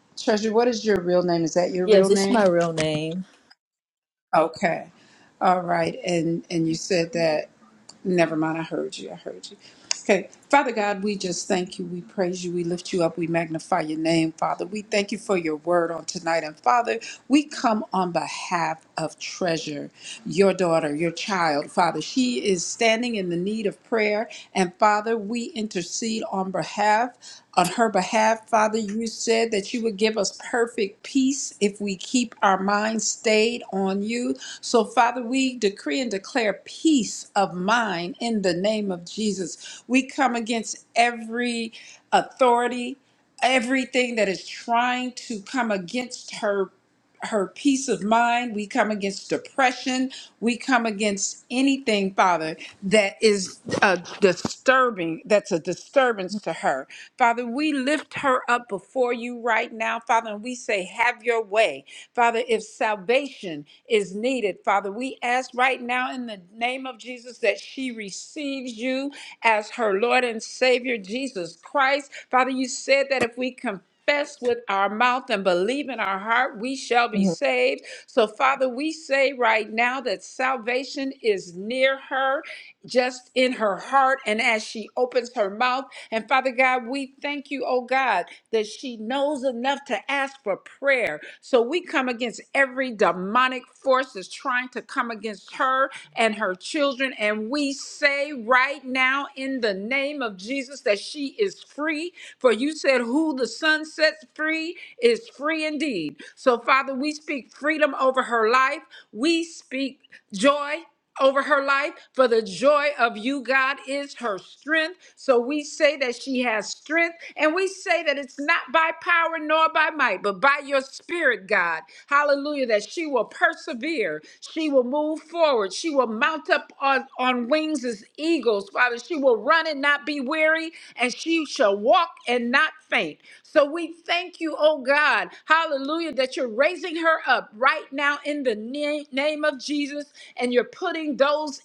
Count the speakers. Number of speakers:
2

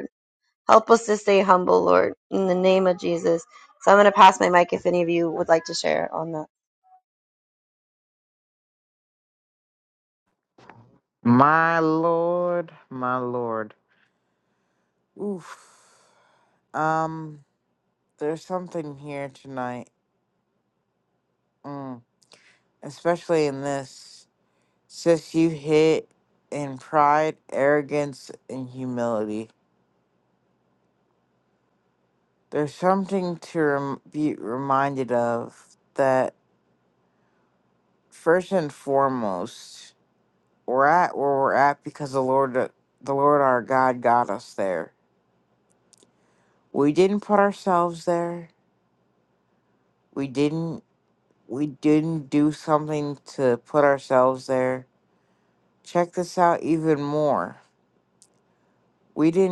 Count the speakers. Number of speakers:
2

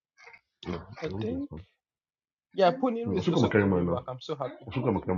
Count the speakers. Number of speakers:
2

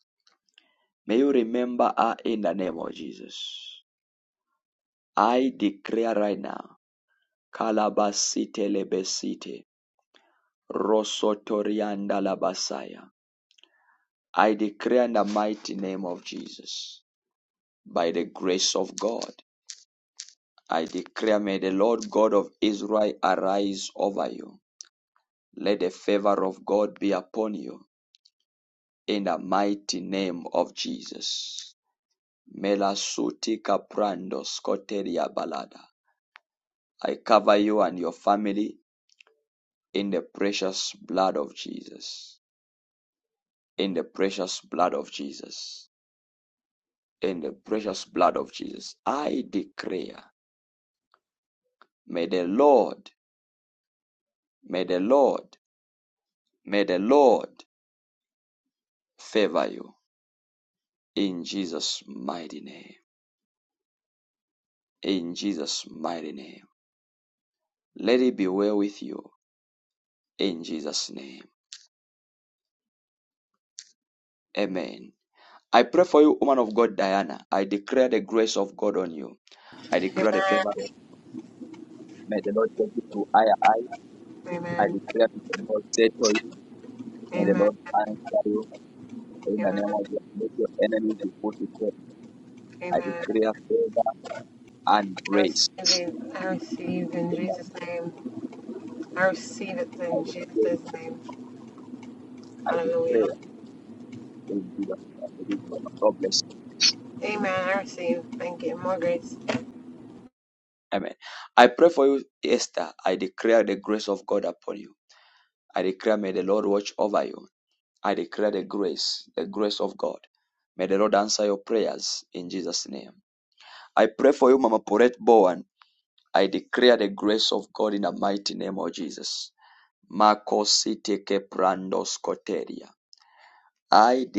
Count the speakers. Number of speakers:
2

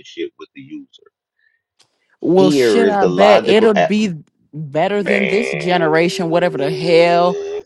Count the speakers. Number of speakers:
2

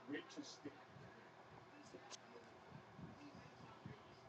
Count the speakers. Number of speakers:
0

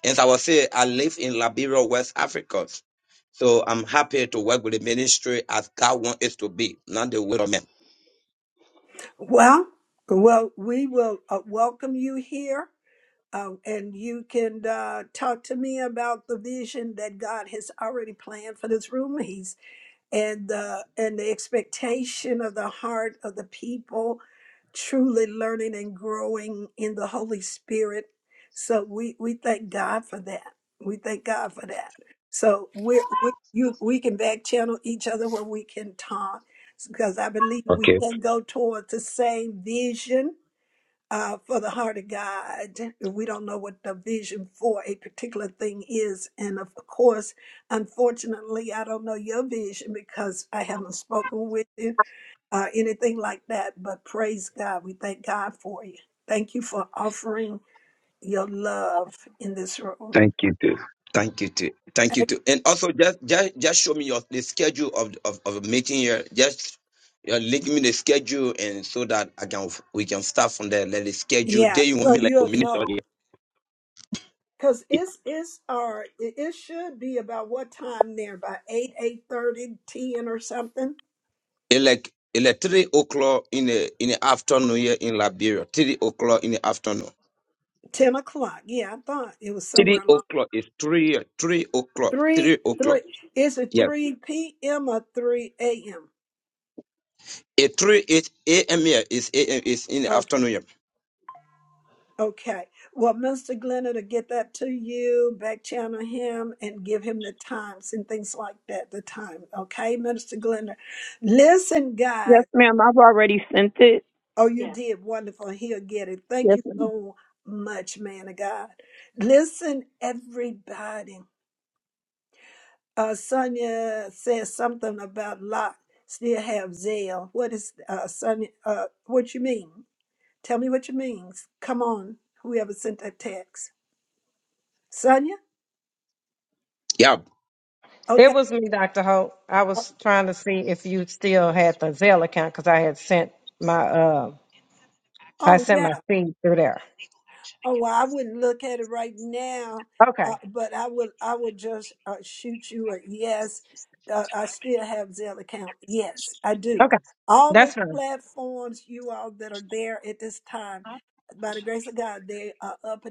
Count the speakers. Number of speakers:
4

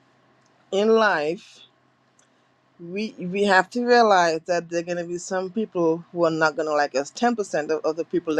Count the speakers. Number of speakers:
1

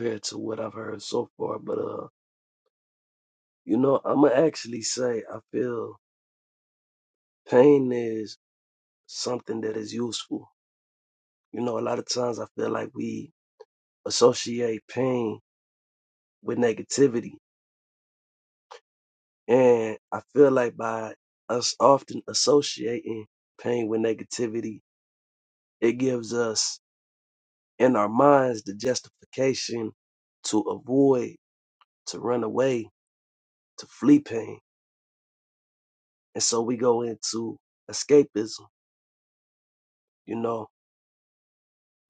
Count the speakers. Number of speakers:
1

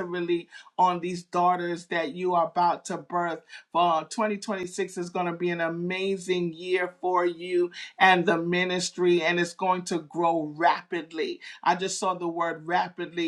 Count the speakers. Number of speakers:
1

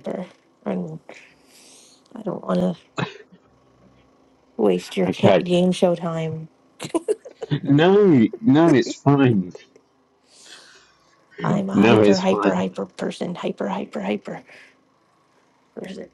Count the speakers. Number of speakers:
2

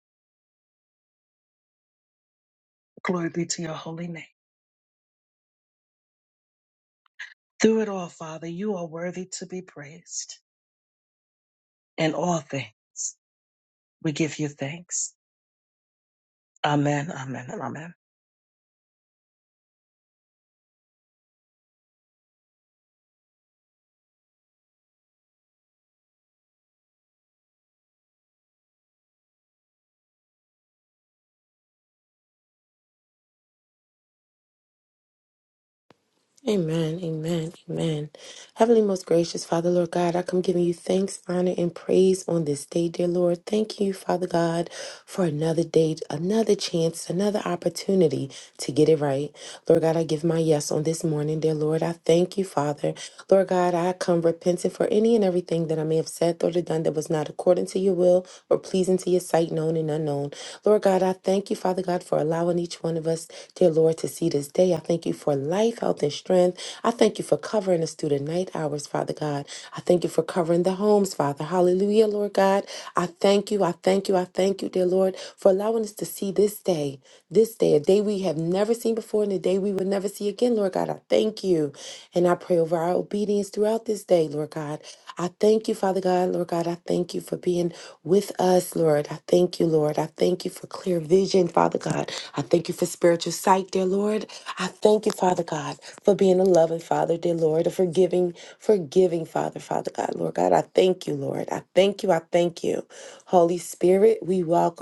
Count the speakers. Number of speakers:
2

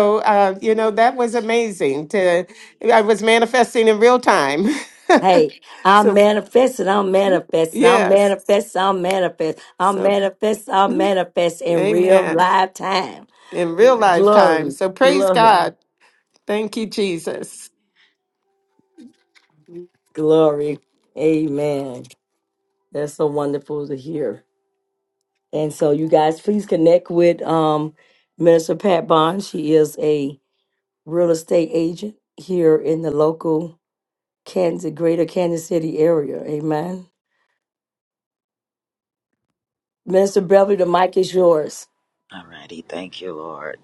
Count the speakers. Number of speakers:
3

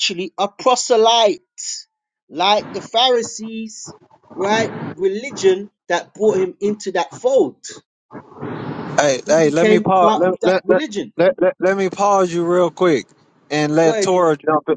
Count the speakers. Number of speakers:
2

